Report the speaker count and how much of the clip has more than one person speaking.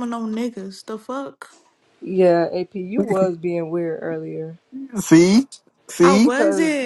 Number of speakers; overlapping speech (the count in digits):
3, about 13%